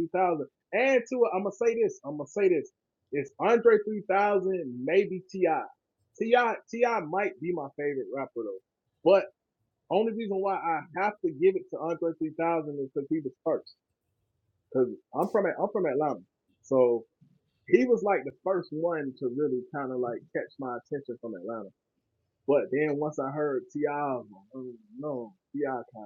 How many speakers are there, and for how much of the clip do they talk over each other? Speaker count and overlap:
one, no overlap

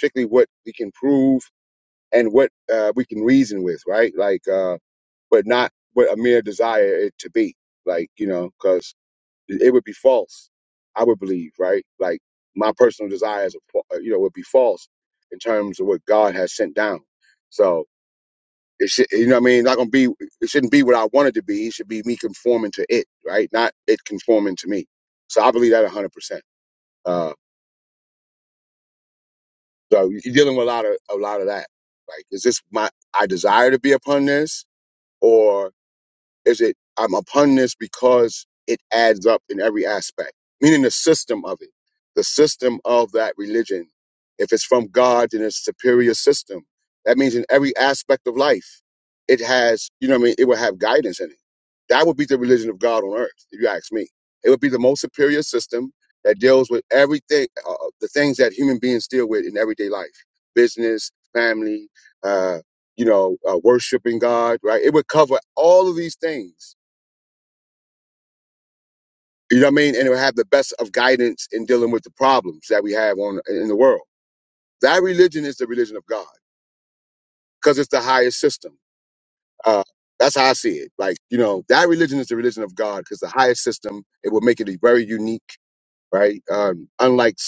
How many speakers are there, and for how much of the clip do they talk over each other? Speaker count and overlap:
one, no overlap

